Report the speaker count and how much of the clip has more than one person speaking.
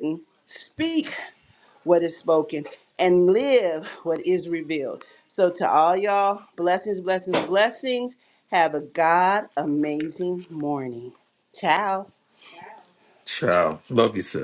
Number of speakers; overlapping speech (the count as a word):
two, no overlap